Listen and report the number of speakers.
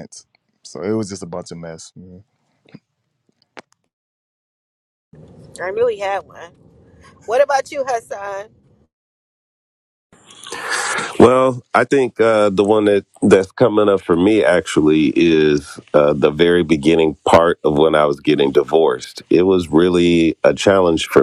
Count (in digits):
3